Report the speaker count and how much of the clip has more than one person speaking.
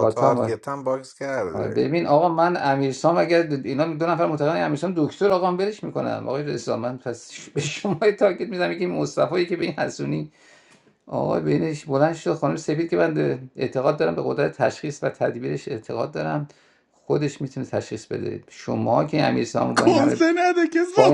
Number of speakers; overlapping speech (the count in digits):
3, about 6%